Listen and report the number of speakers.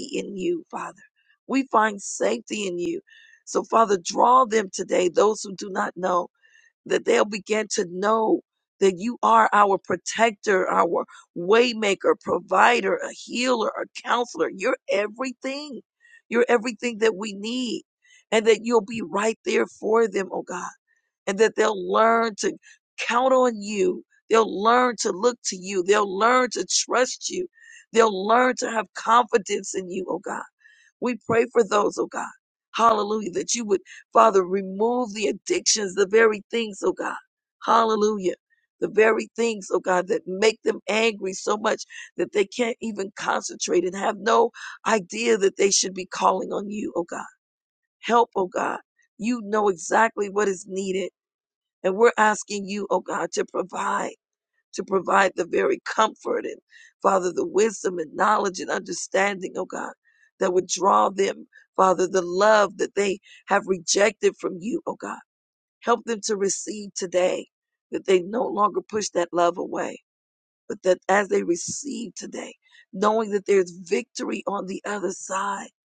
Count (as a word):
one